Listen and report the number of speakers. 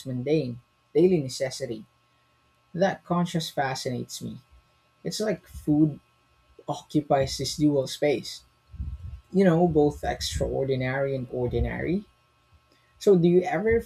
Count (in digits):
1